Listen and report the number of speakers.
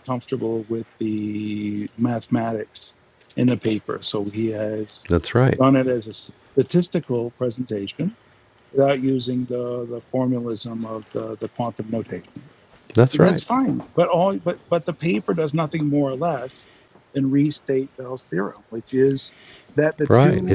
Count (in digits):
2